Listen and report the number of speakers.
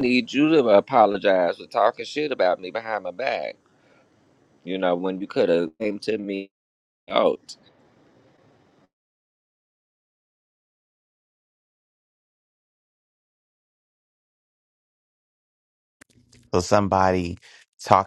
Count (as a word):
two